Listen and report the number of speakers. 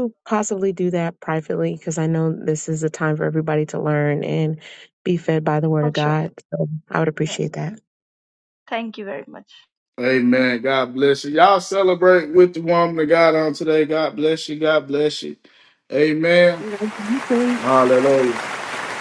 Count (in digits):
3